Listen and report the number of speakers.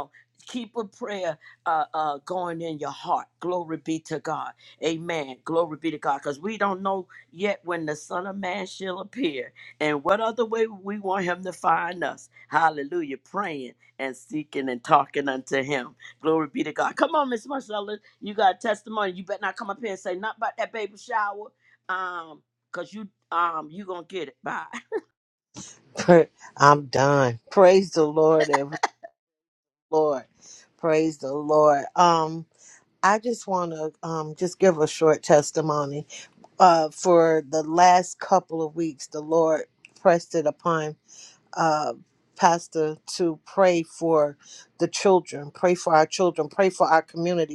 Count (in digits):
2